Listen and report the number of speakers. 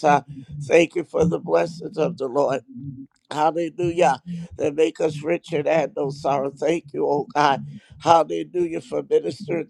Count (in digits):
1